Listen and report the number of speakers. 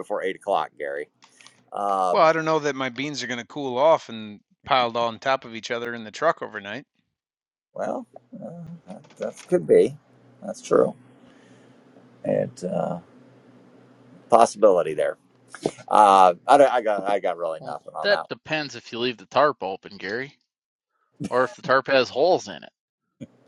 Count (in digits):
3